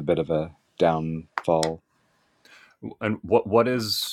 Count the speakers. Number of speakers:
2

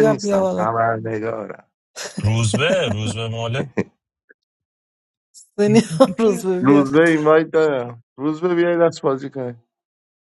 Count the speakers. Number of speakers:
3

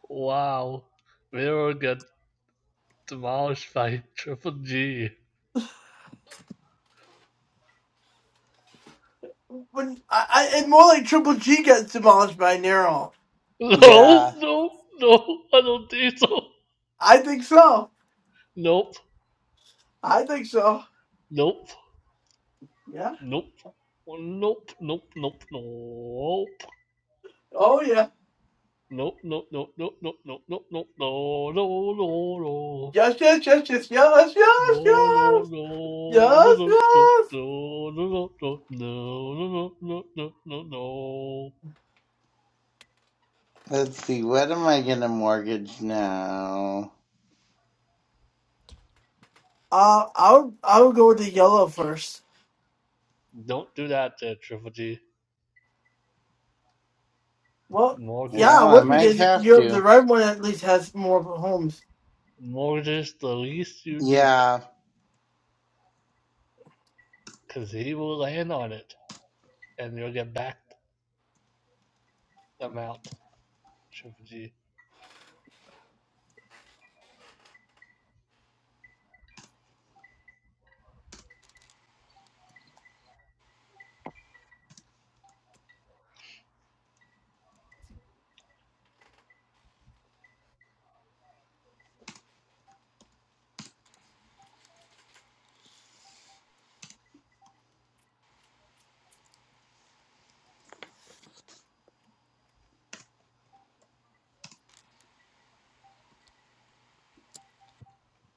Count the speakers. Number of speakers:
3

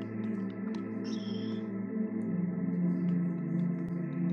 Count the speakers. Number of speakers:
0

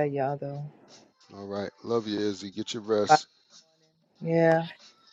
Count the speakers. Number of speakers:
2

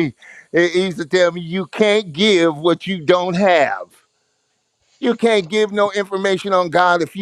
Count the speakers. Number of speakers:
1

